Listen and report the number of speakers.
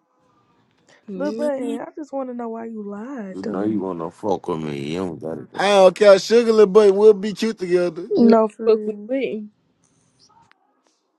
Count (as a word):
four